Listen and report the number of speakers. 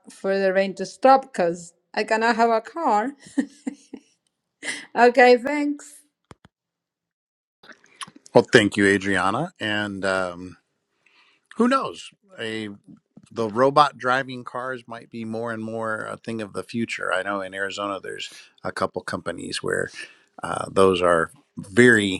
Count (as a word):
two